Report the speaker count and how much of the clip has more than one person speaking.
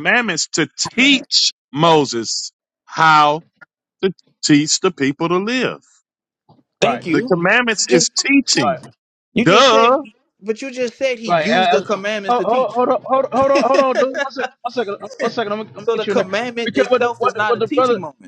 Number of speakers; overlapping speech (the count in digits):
3, about 23%